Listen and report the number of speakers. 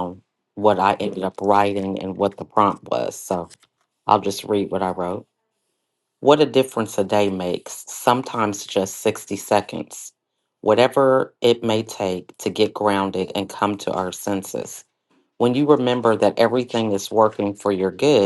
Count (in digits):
1